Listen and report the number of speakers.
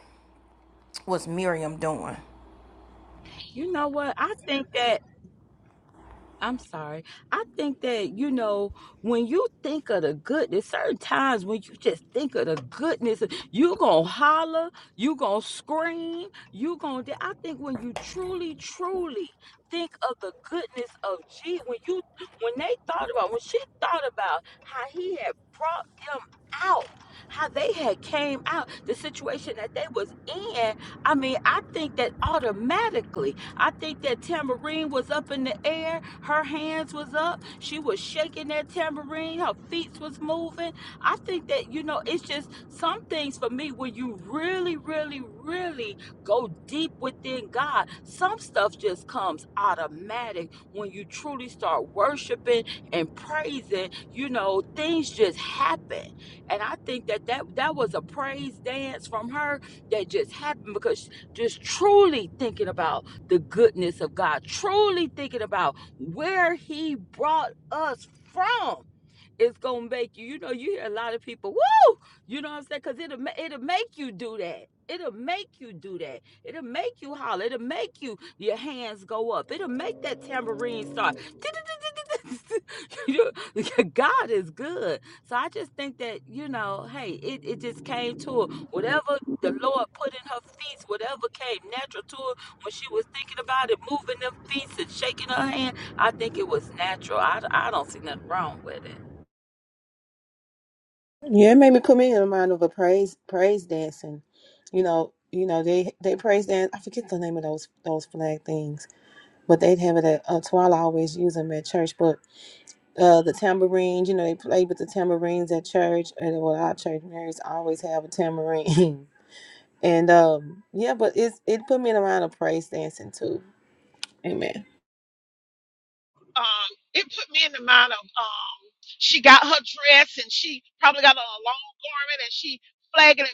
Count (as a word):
four